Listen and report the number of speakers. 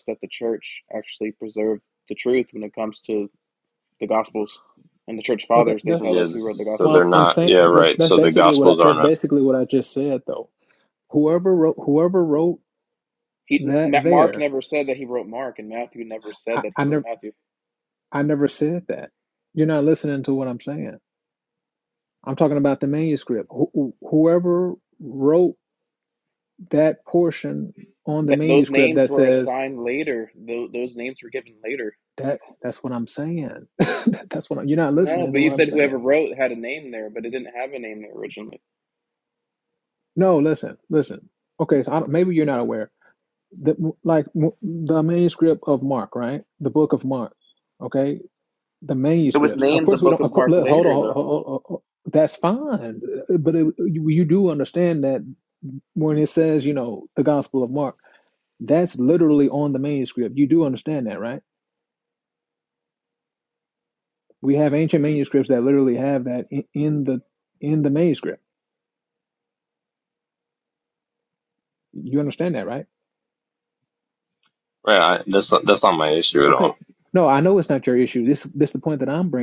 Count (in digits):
3